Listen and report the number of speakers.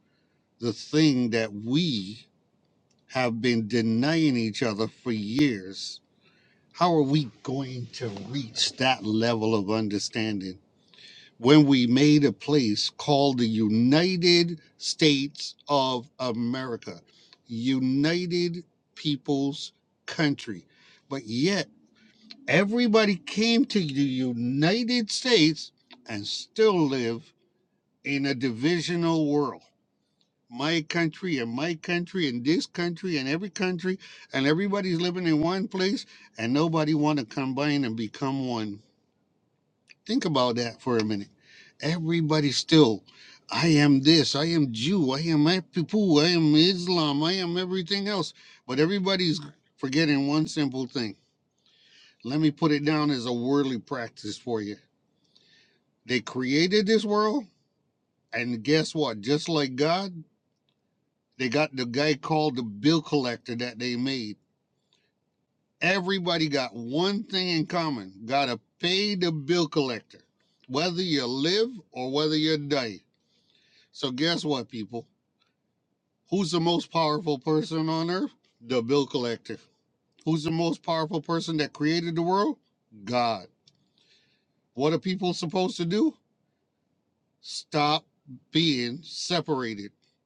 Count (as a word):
one